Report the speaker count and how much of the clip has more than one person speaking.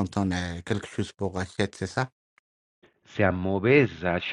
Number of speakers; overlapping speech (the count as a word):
two, no overlap